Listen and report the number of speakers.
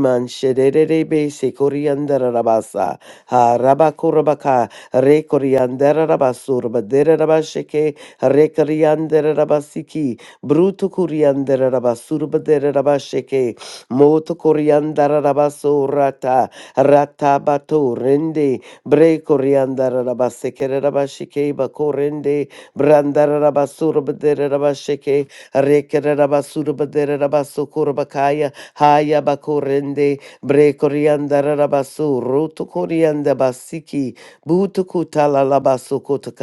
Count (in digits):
1